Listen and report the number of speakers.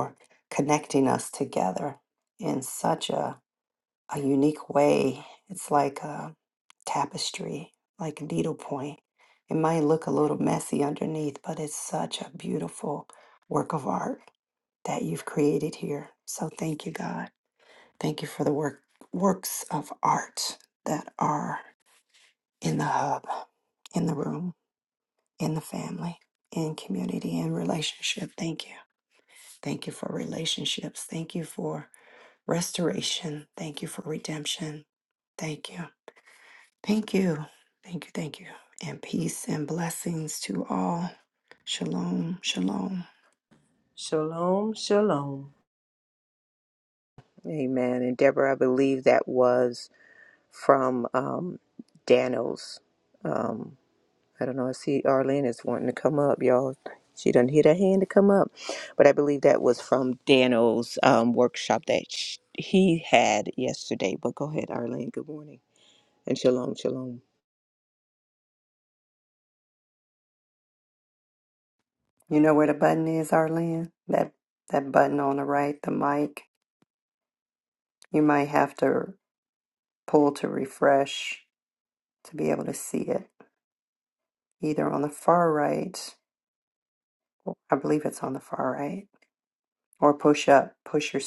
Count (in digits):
3